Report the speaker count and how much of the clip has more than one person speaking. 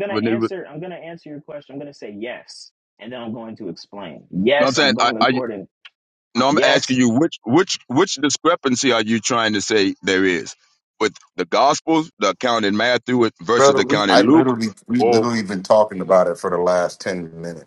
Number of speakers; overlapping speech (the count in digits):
3, about 18%